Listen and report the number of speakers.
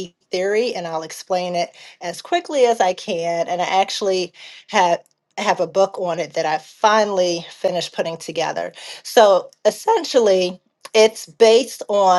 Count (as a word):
one